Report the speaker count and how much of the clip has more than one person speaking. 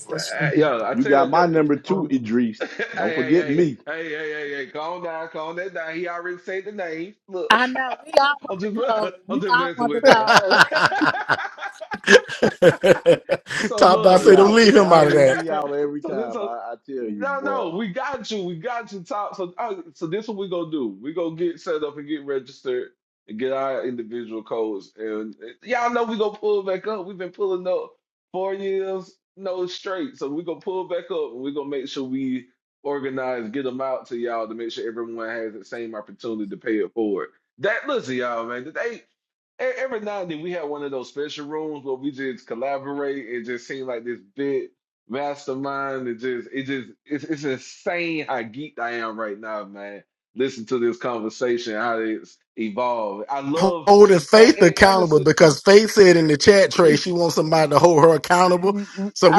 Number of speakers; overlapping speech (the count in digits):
4, about 12%